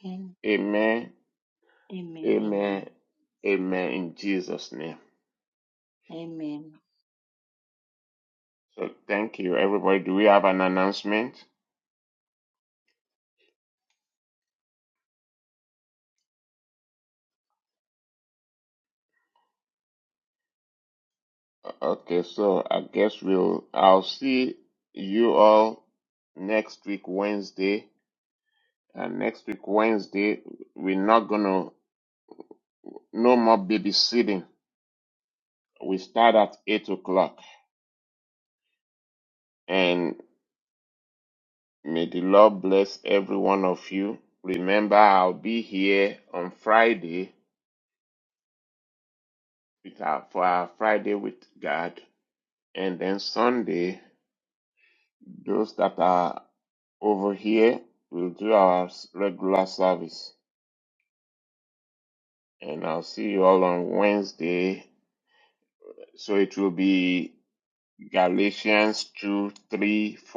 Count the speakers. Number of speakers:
2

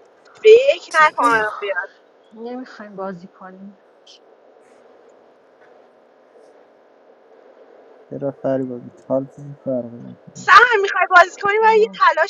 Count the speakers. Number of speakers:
3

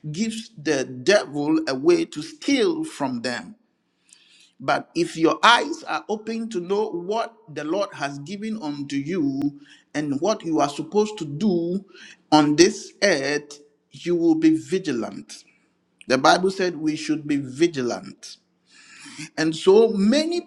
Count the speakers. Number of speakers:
1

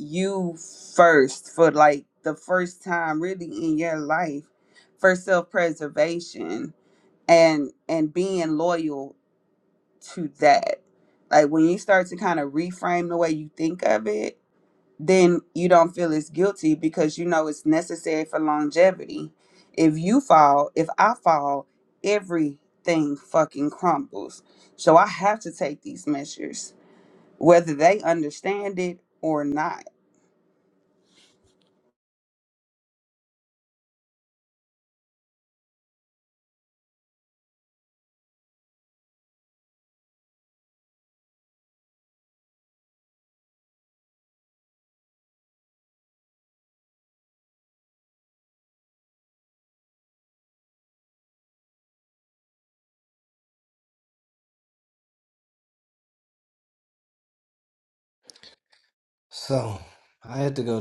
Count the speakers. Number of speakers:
2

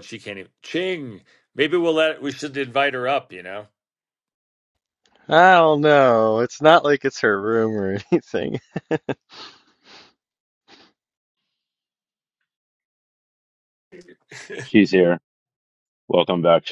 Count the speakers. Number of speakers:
3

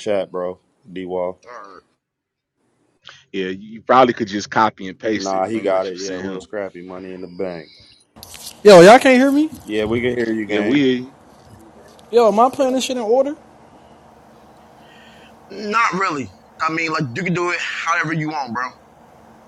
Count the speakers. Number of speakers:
4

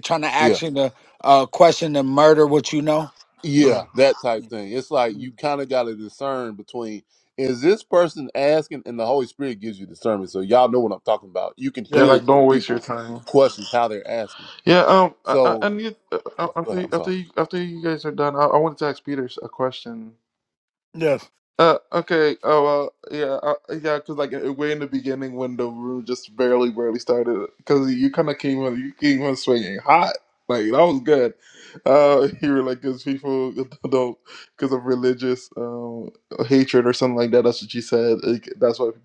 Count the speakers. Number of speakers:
3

